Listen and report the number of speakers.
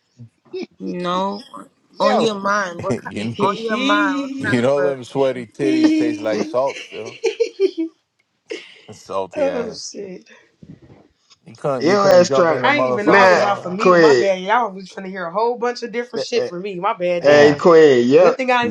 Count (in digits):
4